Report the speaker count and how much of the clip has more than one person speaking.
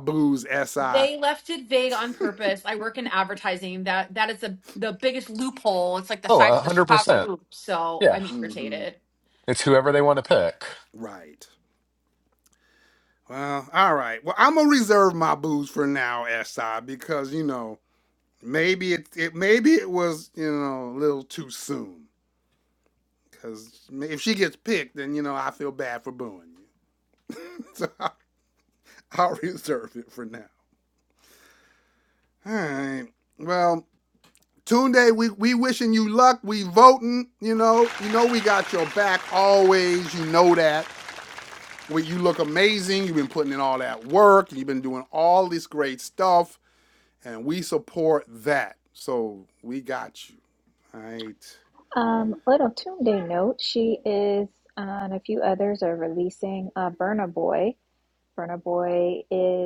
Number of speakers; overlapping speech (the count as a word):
four, about 3%